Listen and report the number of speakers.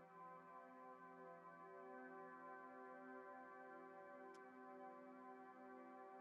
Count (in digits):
0